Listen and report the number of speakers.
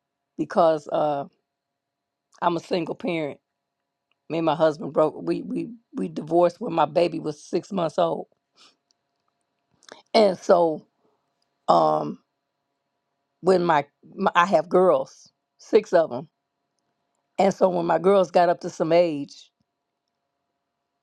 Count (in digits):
1